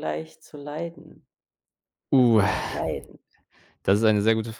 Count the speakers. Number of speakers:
2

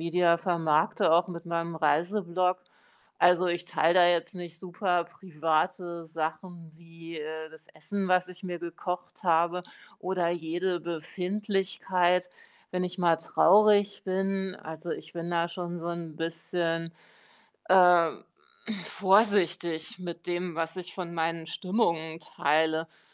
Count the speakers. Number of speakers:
1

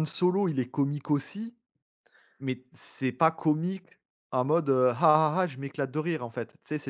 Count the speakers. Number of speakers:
1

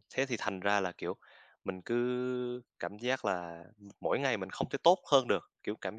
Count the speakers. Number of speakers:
1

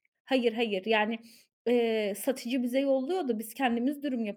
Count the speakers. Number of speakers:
1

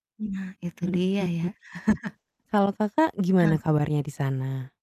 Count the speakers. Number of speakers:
2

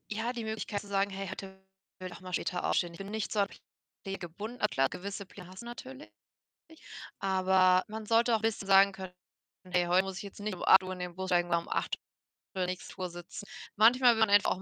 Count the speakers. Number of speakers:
1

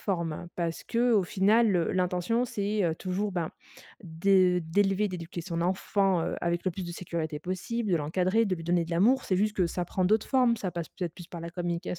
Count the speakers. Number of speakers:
1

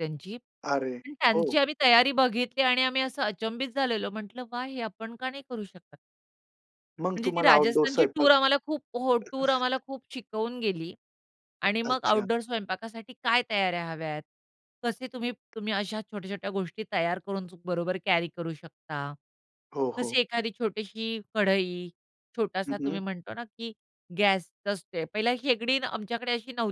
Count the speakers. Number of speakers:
2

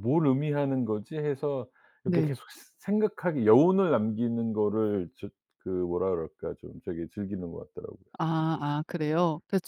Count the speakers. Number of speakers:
2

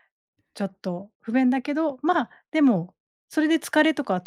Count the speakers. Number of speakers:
1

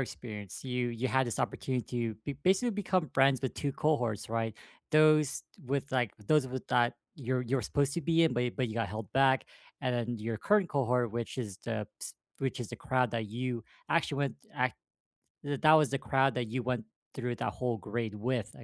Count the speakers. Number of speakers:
1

